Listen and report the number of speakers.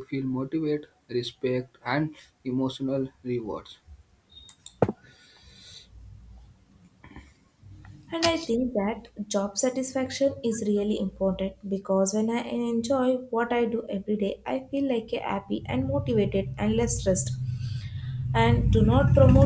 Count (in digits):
2